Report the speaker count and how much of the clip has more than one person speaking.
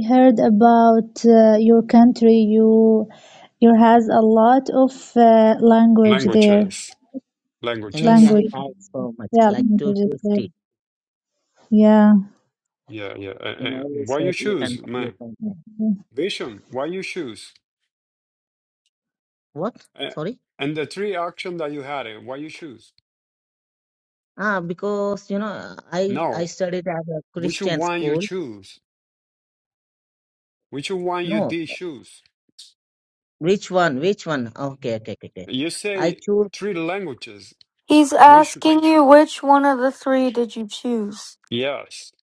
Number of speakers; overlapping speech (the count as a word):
four, about 14%